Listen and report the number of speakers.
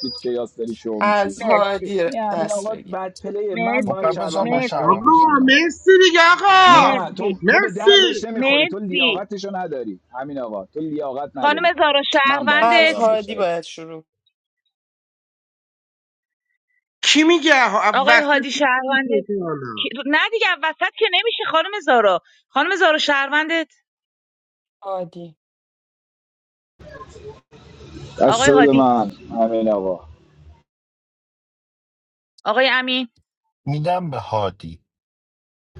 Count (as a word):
five